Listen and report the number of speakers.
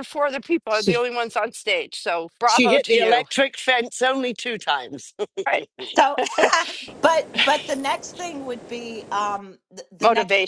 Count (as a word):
three